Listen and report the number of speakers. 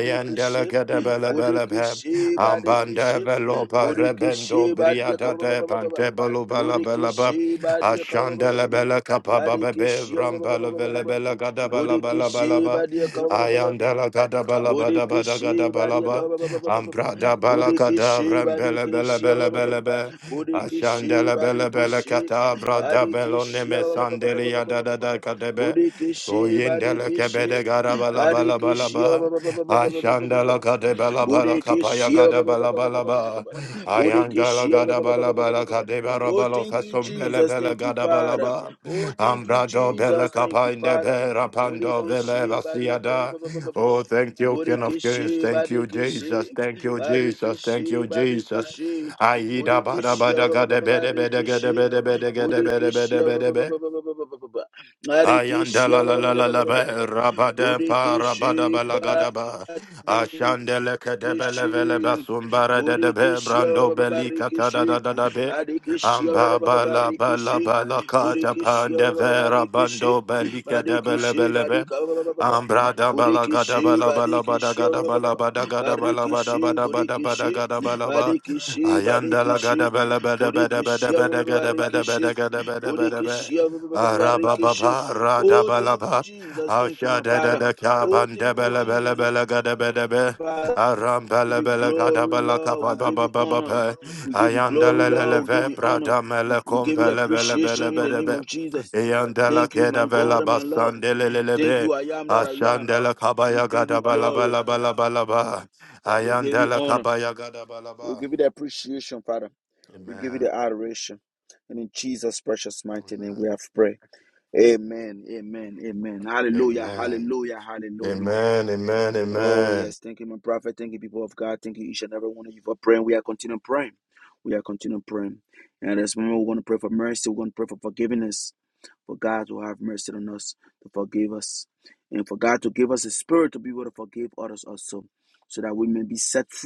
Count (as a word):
two